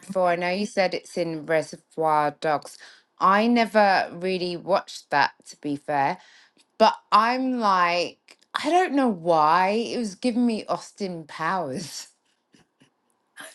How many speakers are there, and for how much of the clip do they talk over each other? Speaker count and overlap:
one, no overlap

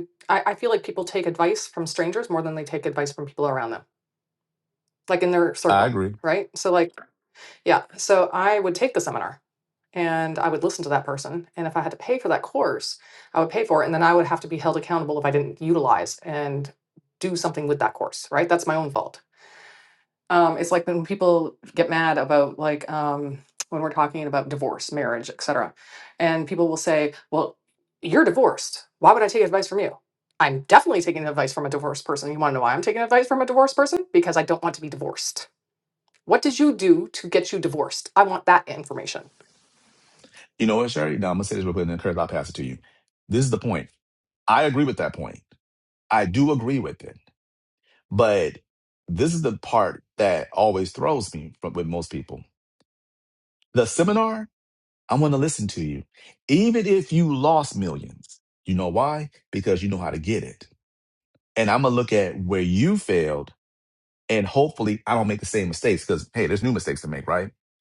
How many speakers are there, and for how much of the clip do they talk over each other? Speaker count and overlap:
two, under 1%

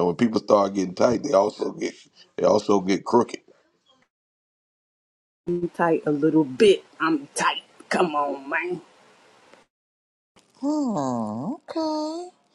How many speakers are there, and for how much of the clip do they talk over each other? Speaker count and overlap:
three, no overlap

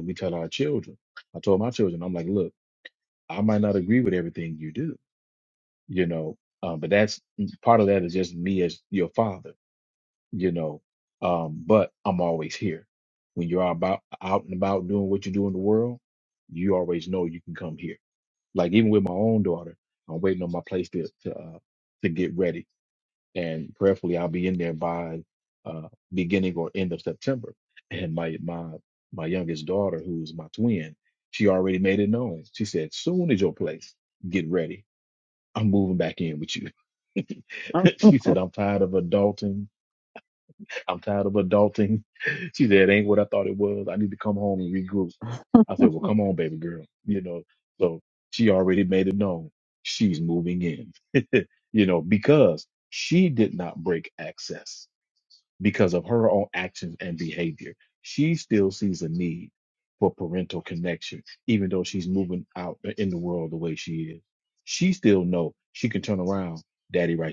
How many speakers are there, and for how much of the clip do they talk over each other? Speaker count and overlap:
one, no overlap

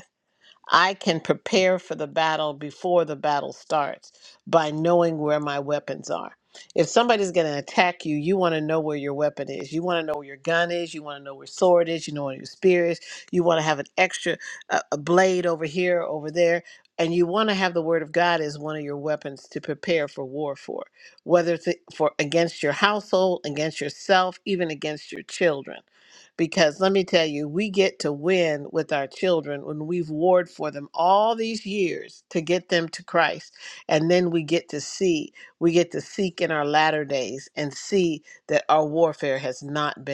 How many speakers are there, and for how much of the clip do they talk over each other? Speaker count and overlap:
one, no overlap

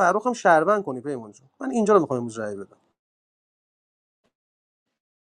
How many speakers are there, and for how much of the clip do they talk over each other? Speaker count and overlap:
one, no overlap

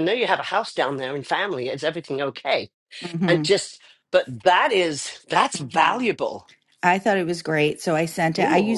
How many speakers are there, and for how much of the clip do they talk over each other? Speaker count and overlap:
two, about 12%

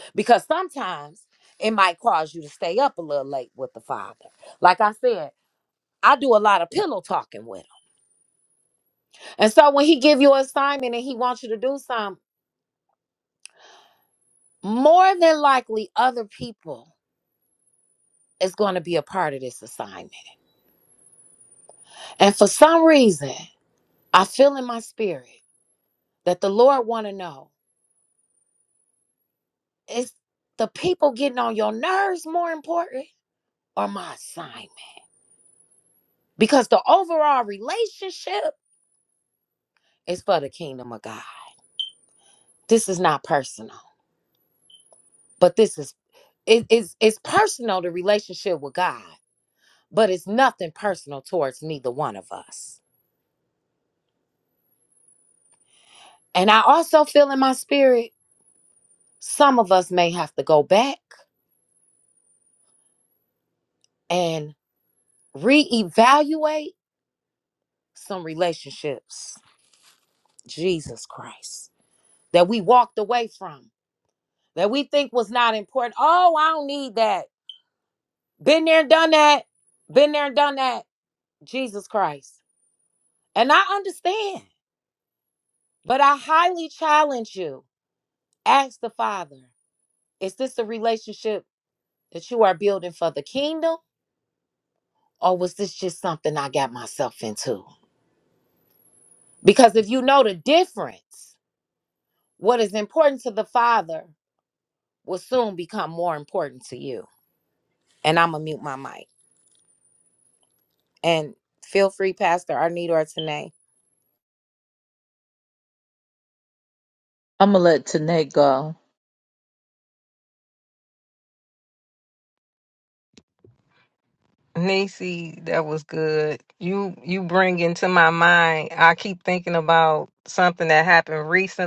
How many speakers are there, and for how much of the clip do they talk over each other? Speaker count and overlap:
three, no overlap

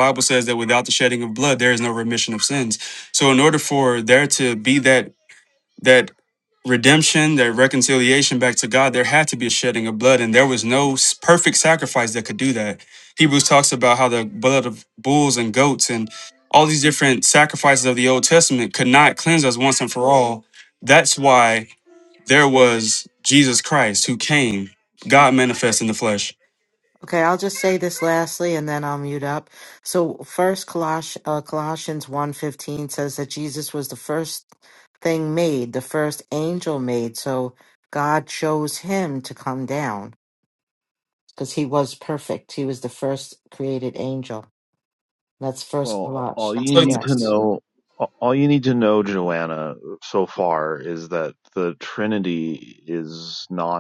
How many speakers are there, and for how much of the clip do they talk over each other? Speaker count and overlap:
three, about 2%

